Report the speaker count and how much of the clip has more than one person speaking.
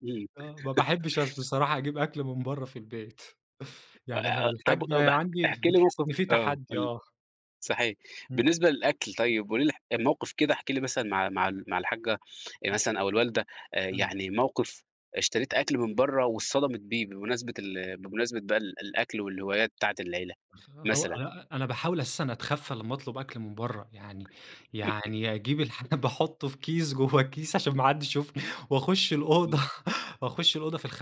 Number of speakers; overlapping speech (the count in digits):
2, about 9%